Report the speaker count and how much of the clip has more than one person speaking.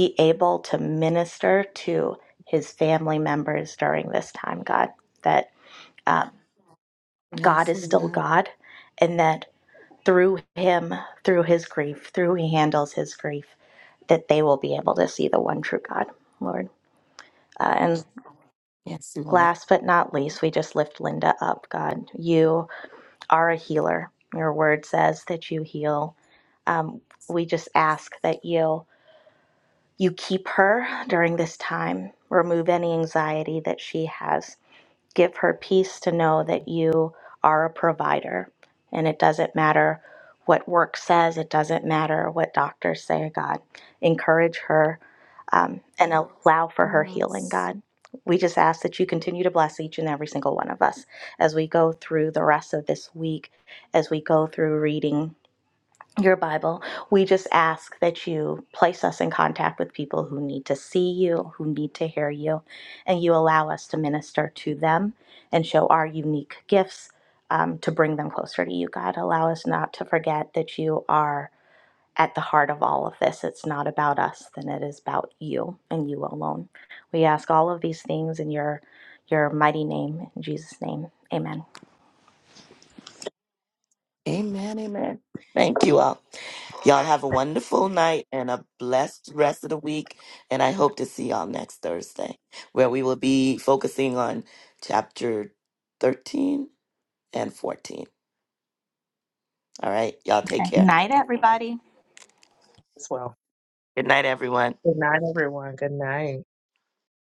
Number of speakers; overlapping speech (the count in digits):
3, about 2%